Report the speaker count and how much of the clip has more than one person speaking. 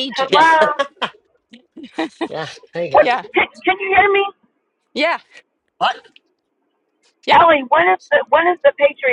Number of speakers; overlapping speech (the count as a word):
three, about 9%